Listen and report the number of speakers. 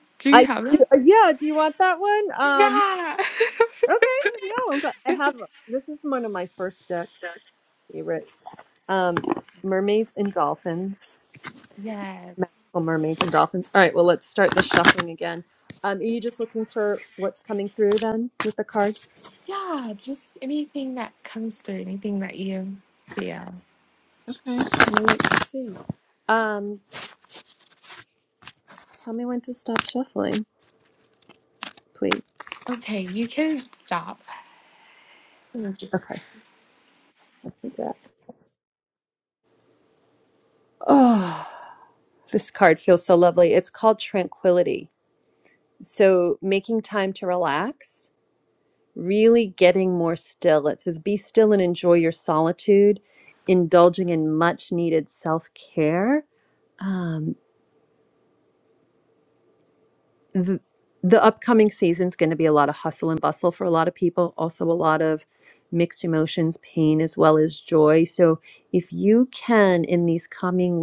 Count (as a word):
two